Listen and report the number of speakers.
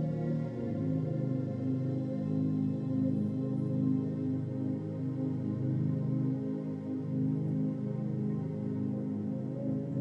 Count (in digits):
0